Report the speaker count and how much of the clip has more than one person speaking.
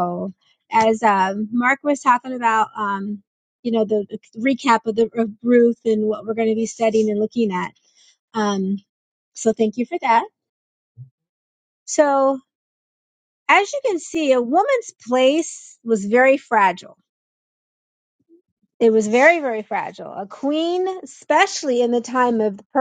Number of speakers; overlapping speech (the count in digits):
1, no overlap